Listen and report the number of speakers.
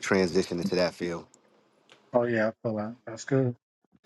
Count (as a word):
two